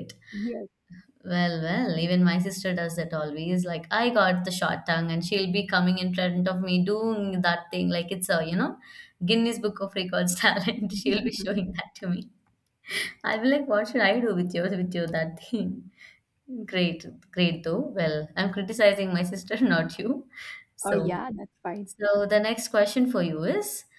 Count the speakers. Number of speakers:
two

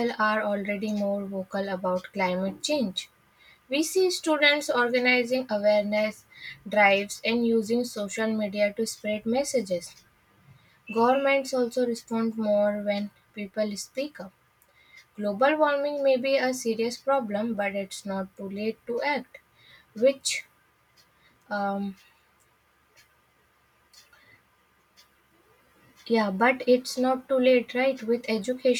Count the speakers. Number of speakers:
one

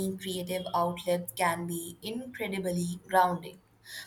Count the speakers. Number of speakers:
one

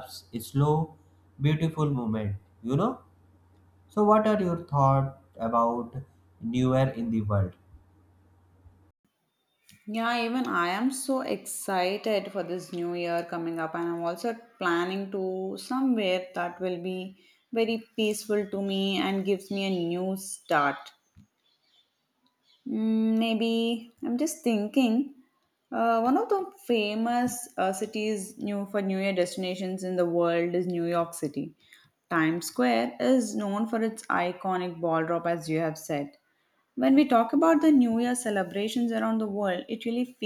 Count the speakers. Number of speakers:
two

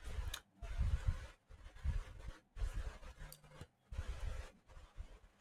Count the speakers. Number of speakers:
zero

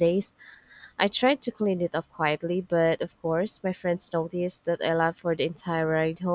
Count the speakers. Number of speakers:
one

